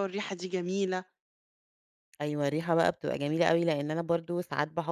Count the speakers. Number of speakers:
two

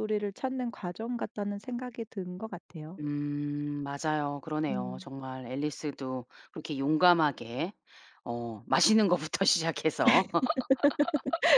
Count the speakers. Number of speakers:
two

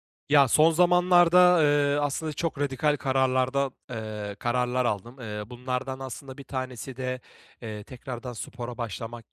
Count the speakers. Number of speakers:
one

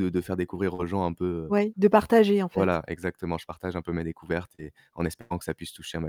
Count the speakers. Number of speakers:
two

